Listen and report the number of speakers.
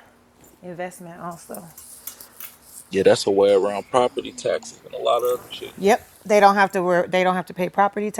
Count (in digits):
2